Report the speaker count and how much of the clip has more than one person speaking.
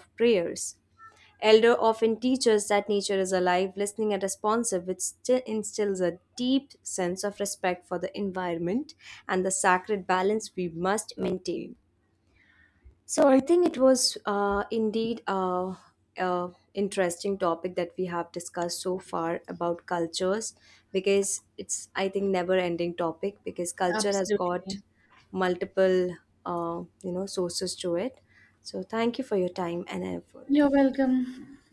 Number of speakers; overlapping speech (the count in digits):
2, about 3%